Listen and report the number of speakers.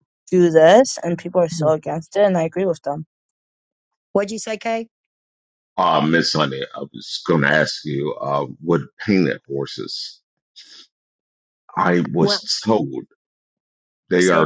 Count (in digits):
3